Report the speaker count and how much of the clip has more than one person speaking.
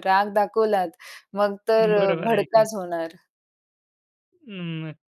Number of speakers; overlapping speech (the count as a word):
two, about 17%